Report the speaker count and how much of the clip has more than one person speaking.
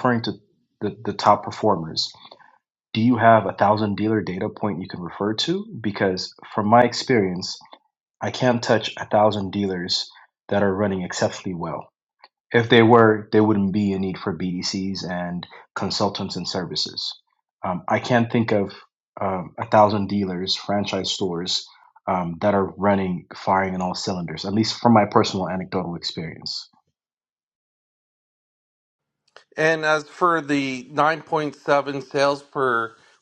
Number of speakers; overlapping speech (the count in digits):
2, no overlap